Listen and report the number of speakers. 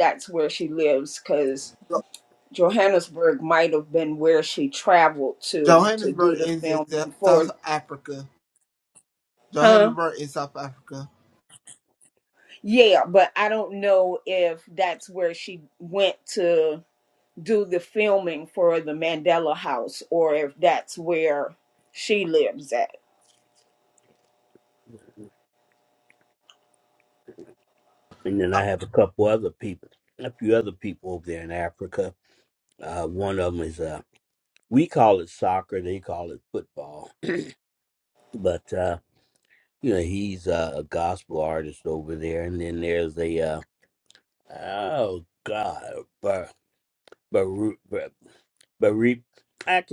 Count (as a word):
three